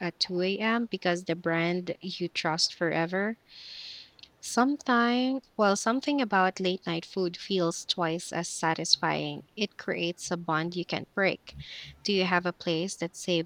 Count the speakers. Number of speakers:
1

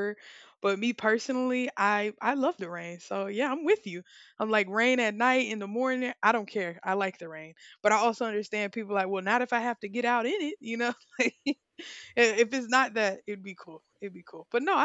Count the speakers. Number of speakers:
1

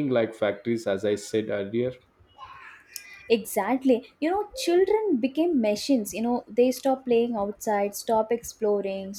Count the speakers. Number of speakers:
2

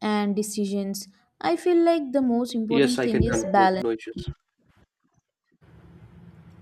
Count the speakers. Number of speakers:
2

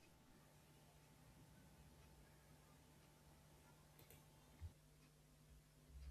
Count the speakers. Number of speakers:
0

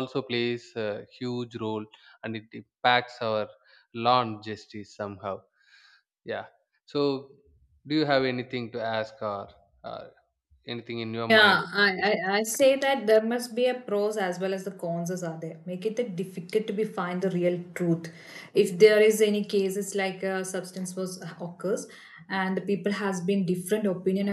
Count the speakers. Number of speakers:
2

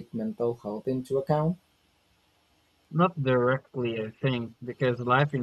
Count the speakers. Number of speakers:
2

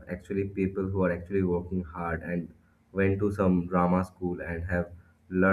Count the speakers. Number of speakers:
1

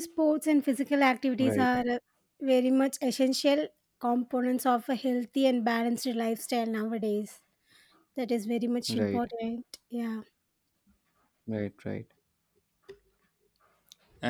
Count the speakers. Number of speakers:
2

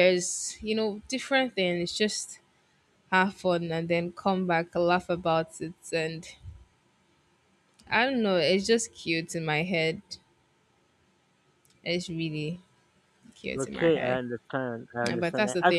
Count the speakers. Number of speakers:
2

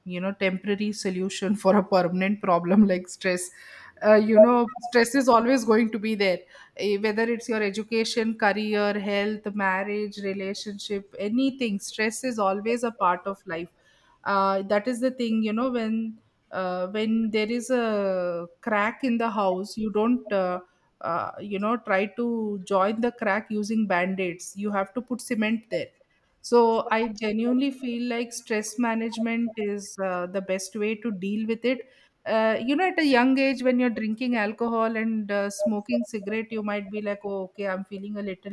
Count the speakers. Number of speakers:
1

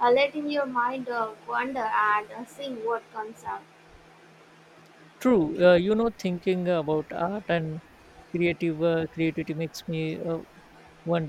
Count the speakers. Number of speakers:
2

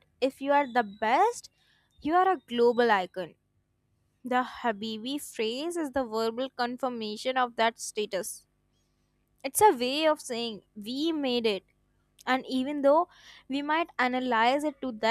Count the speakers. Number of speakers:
1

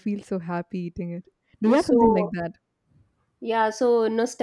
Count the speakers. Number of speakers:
2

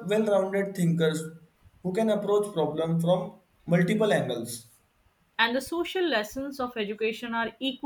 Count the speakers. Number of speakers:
2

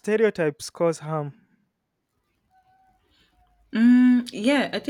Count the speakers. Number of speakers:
2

